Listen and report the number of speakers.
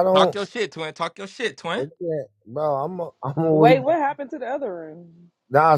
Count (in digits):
3